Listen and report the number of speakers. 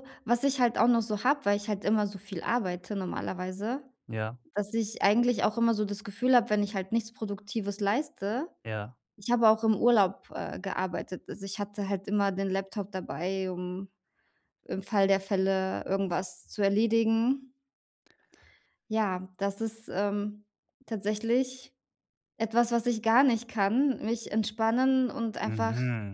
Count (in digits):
2